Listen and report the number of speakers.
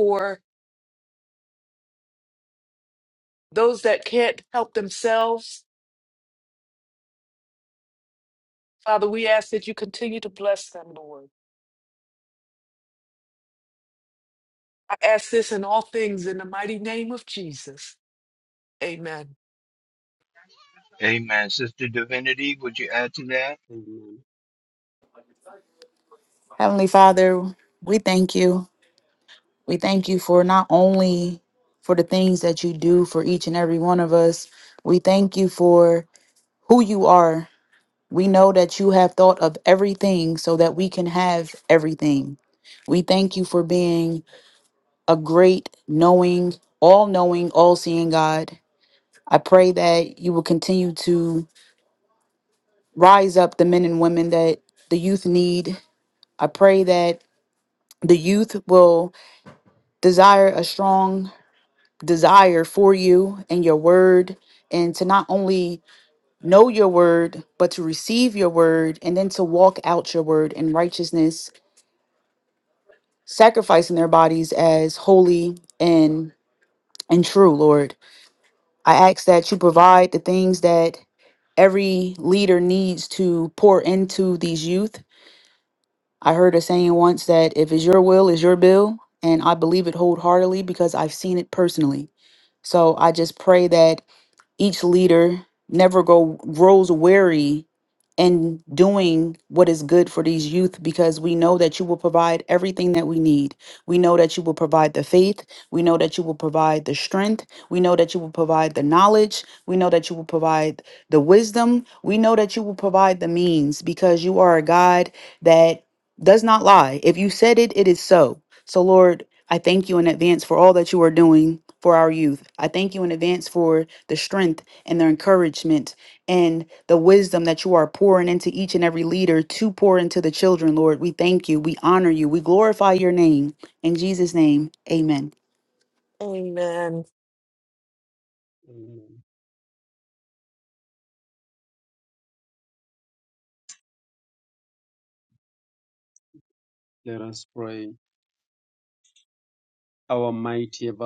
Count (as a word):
four